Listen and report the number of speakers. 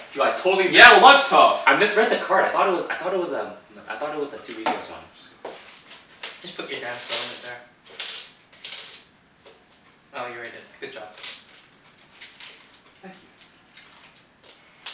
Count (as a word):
three